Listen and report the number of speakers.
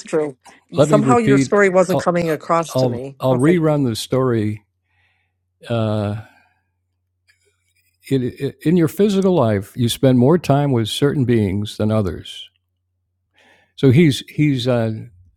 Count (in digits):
2